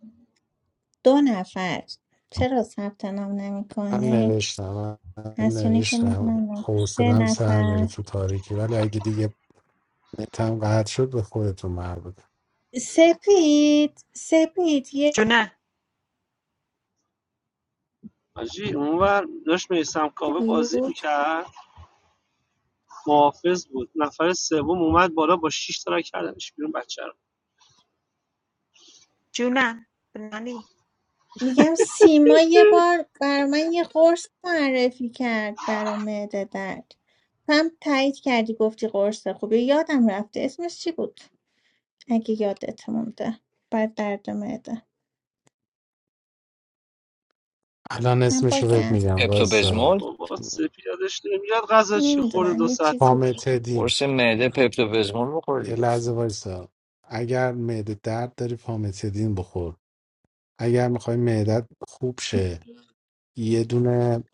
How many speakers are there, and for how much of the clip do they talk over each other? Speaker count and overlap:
5, about 10%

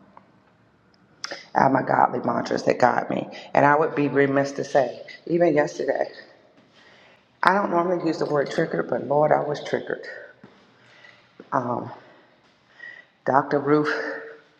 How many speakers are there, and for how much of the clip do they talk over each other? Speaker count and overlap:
1, no overlap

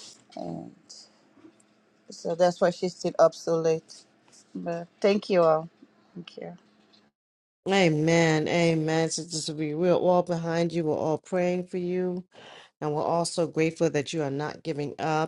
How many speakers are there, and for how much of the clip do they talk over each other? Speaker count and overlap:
2, no overlap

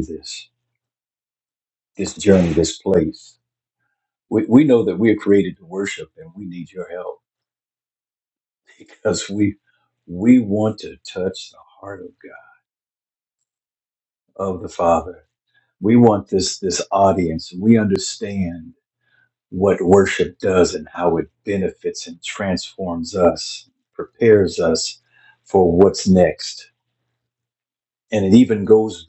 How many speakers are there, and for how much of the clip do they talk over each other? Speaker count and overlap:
1, no overlap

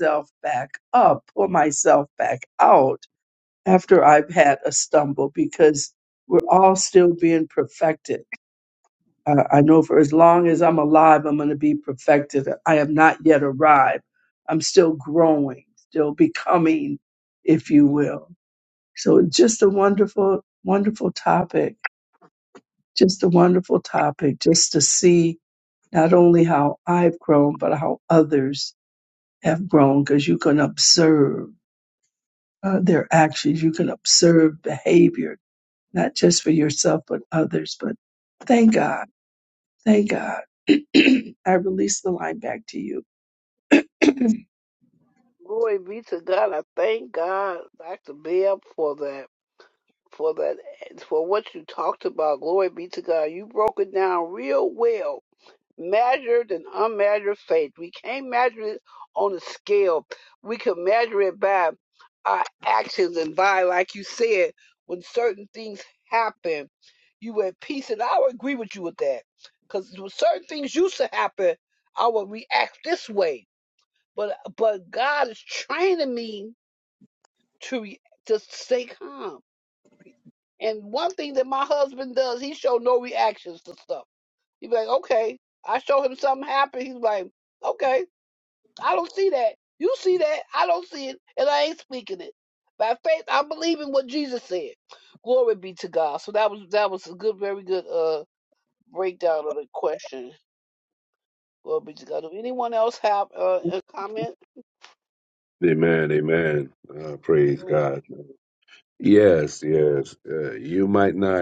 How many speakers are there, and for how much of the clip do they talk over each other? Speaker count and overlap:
3, under 1%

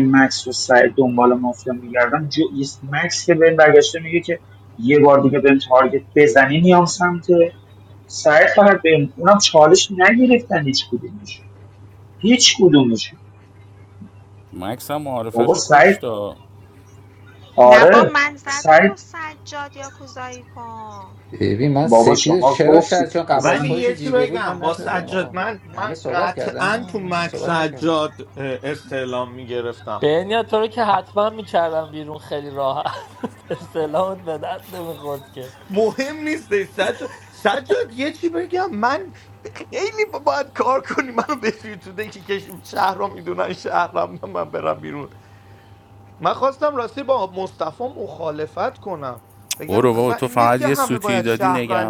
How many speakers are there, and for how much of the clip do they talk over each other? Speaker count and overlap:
6, about 18%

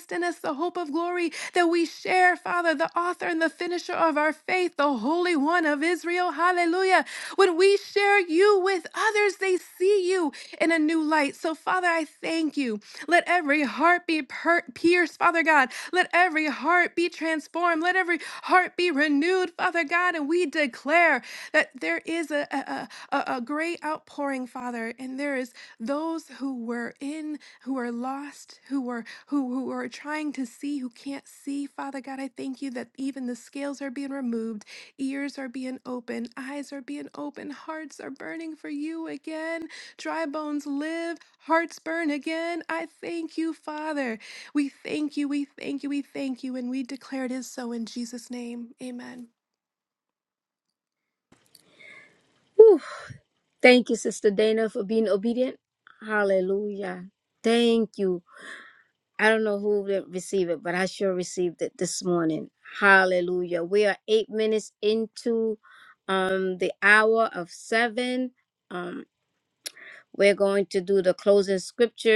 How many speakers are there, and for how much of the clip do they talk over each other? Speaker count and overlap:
2, no overlap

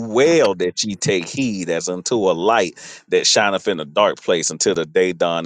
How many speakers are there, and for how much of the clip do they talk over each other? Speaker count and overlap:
1, no overlap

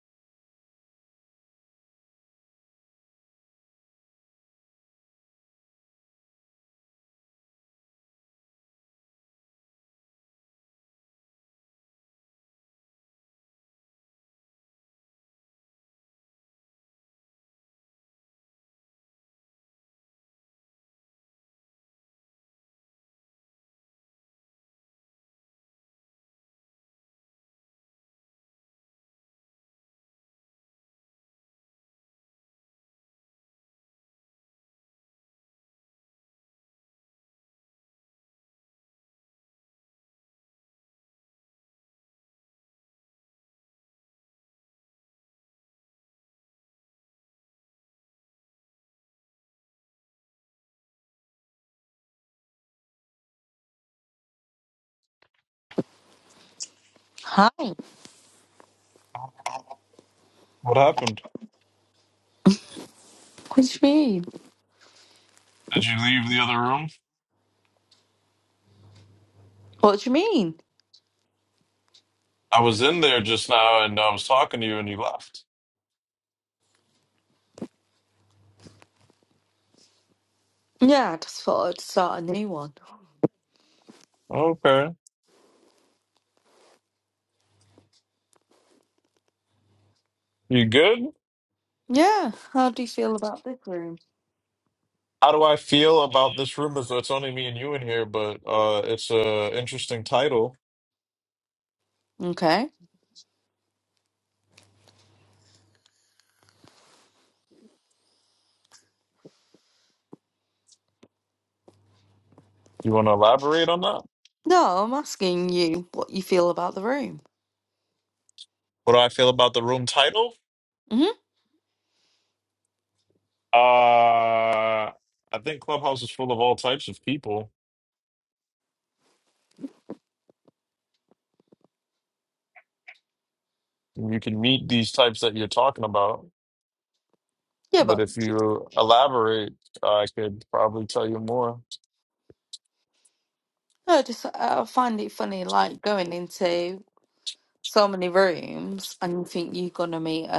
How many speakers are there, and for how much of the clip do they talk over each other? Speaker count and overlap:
2, under 1%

